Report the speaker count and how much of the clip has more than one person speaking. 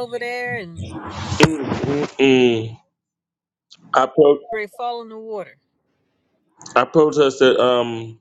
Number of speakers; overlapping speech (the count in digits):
2, no overlap